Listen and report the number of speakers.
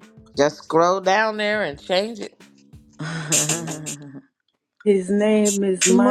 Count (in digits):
3